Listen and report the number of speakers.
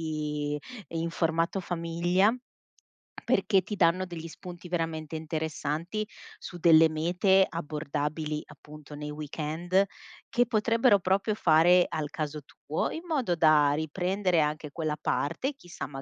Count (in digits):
1